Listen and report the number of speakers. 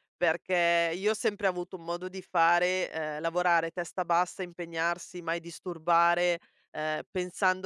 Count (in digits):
1